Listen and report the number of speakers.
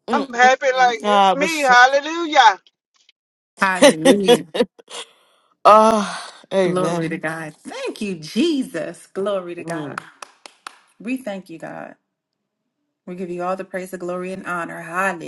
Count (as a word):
three